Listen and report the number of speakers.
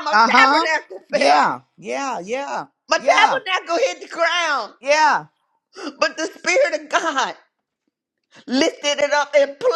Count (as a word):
two